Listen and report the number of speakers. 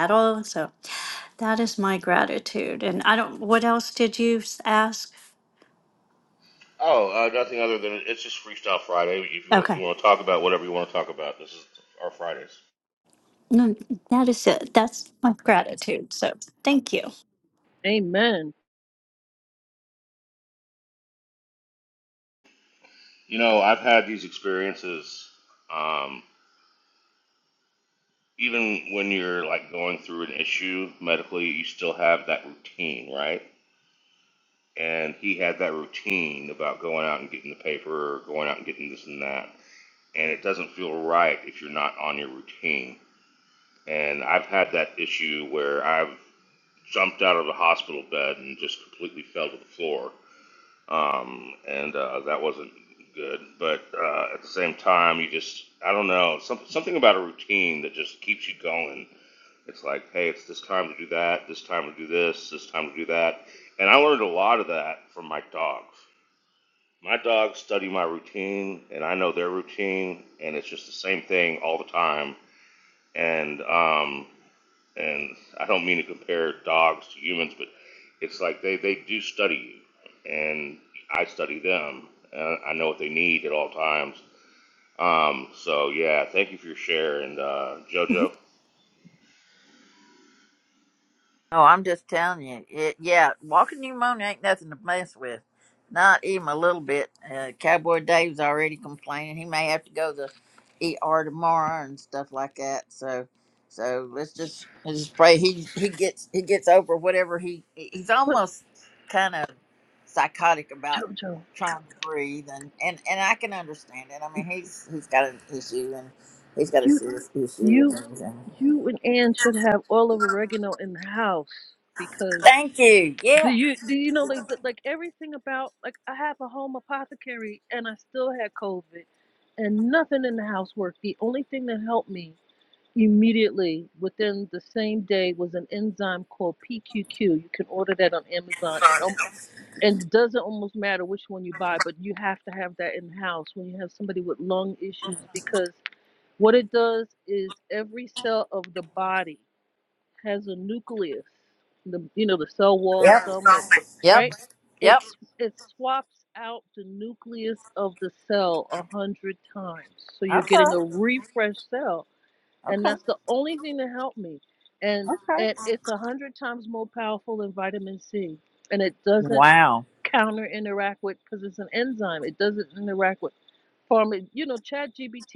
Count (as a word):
four